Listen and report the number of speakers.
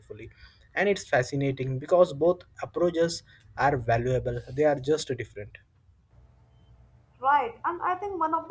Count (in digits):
2